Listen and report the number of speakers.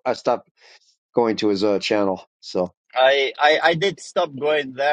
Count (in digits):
2